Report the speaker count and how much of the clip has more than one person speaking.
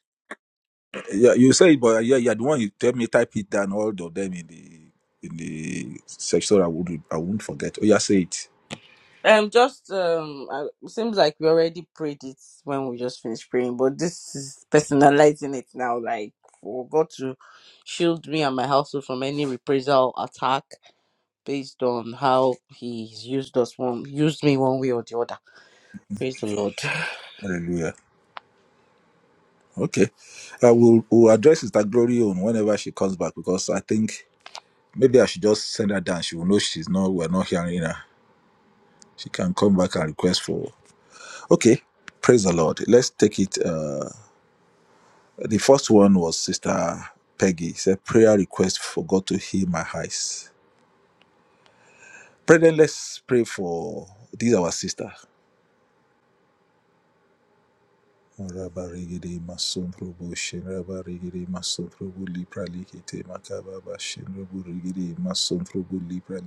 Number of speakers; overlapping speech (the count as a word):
two, no overlap